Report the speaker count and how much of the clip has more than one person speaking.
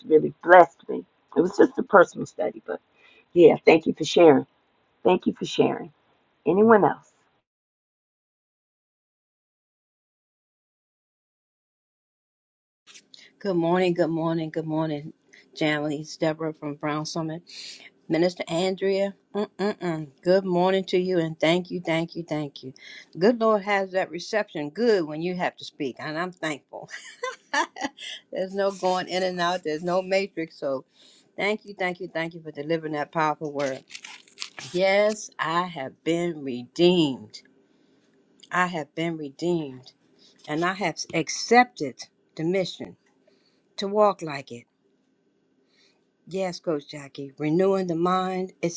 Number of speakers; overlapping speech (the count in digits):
2, no overlap